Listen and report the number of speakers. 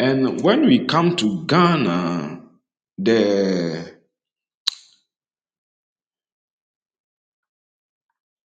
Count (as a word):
one